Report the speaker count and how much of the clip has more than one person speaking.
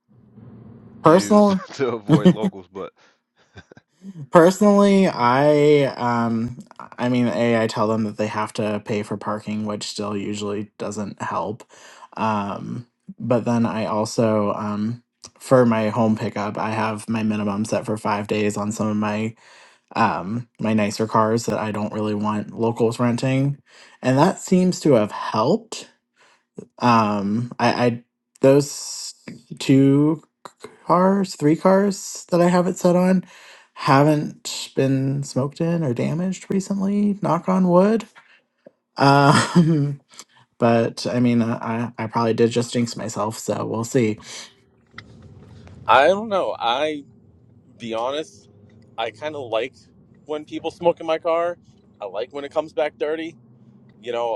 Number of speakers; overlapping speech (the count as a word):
three, about 1%